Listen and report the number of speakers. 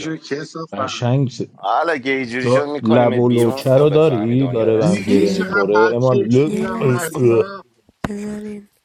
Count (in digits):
4